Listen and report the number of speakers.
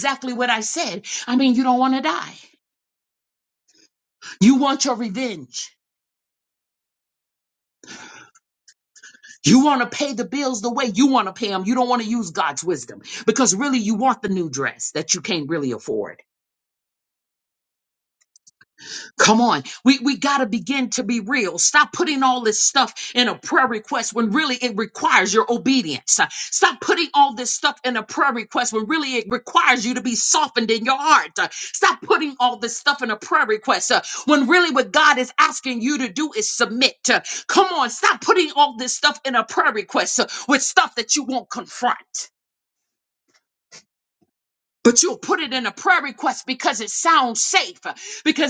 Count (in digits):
1